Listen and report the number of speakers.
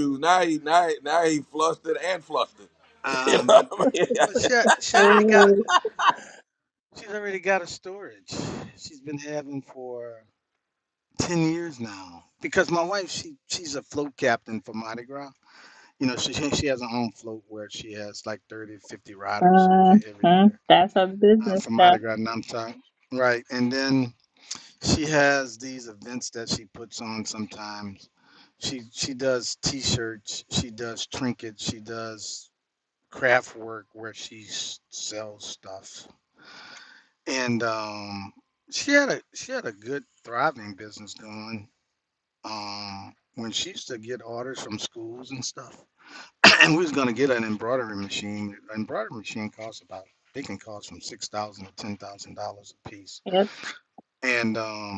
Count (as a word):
three